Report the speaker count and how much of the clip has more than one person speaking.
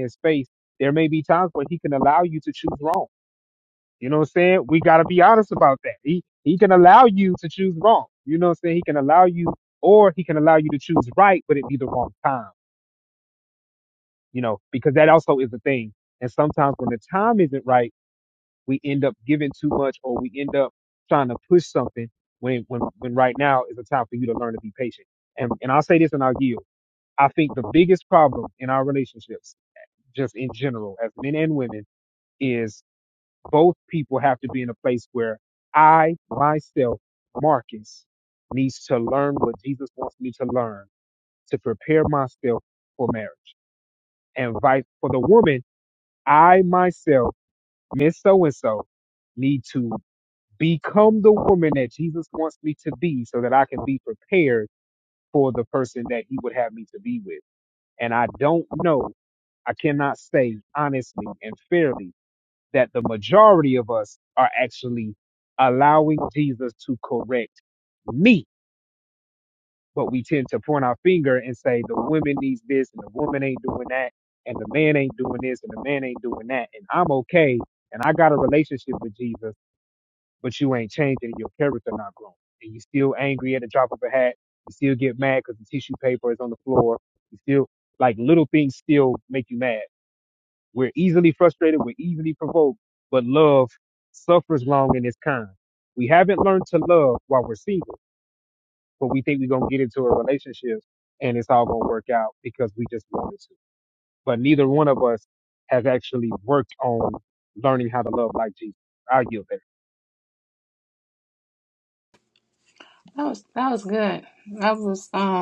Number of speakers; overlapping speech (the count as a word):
two, no overlap